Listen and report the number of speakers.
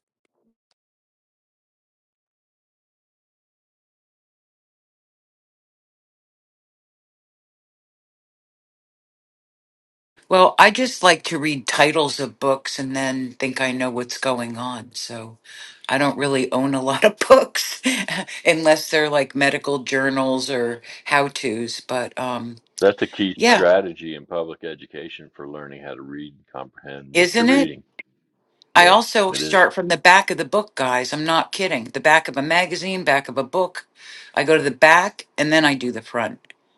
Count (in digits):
2